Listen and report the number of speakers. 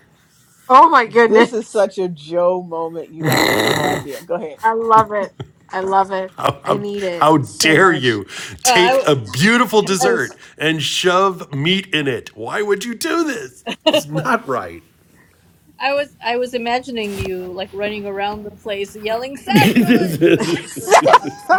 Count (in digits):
4